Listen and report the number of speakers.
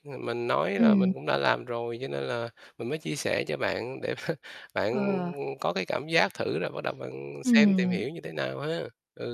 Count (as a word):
two